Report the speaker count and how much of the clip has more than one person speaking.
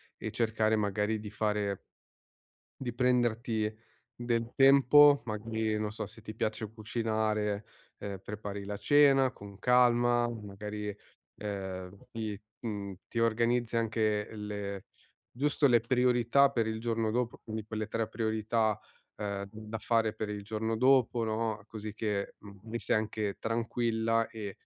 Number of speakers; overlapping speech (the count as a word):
one, no overlap